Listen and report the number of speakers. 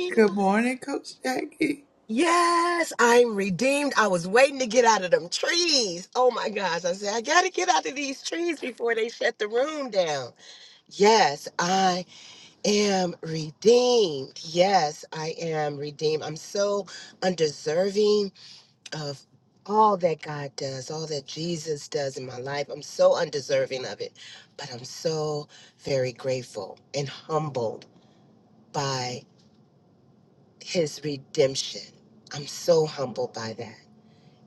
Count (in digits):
2